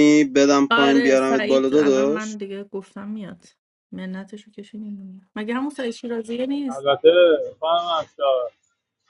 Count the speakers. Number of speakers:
three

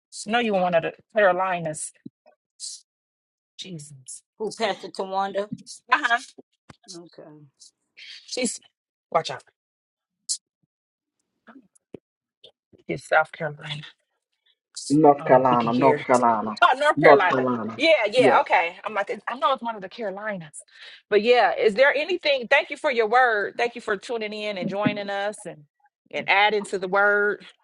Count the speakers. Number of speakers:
three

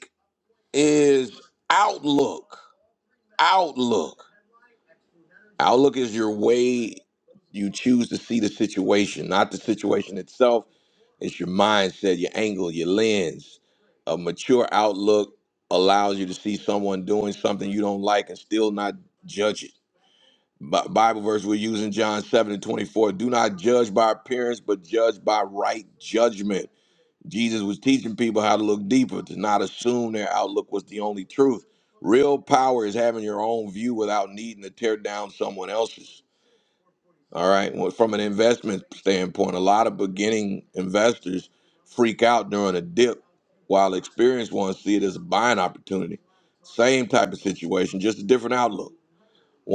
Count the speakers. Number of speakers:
one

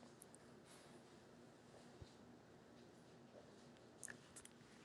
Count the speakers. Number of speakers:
zero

